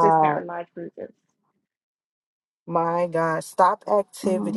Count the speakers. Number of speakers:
2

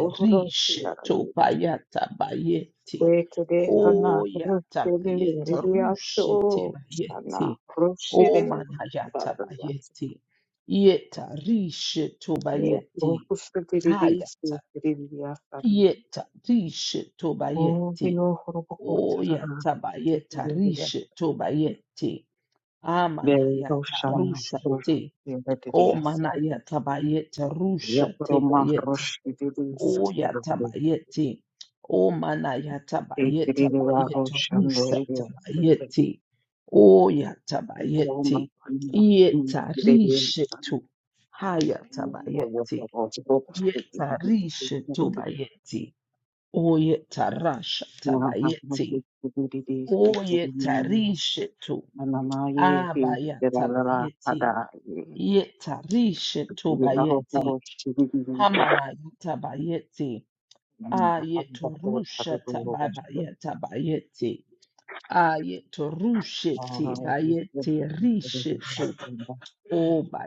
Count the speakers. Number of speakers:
2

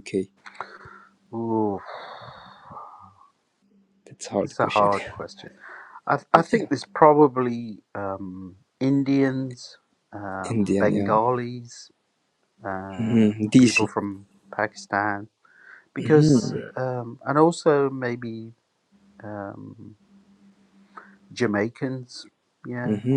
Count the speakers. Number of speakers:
2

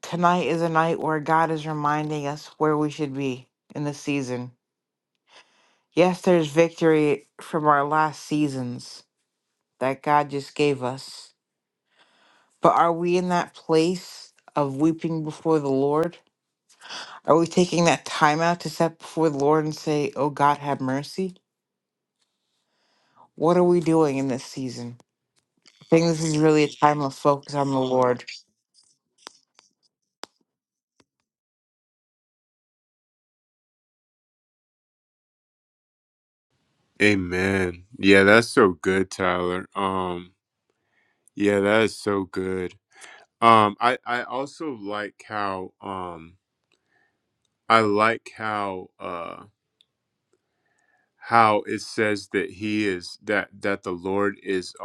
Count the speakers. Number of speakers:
2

